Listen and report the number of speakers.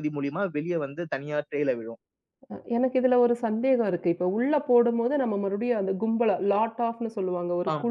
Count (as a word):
two